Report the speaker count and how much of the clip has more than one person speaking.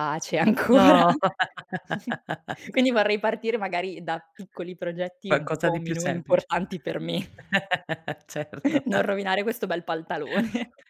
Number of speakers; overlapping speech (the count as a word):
two, about 14%